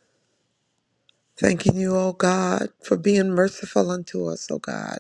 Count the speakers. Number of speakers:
one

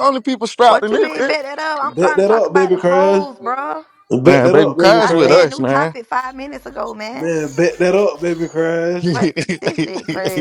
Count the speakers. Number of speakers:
three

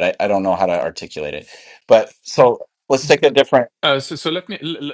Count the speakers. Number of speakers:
two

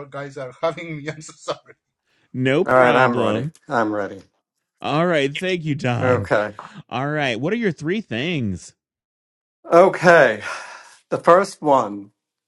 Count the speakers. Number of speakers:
three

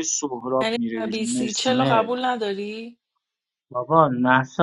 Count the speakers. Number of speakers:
three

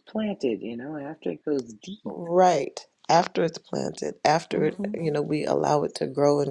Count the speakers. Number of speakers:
two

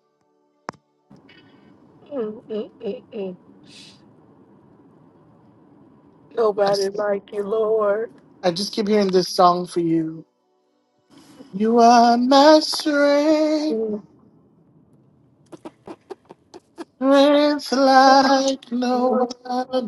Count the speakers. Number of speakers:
two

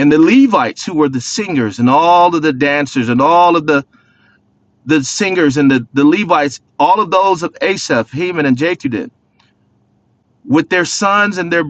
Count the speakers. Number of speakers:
one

